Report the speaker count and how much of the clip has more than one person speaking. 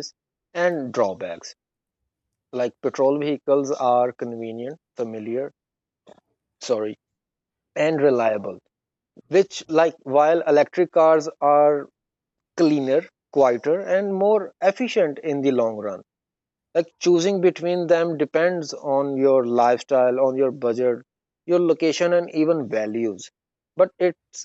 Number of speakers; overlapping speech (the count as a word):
one, no overlap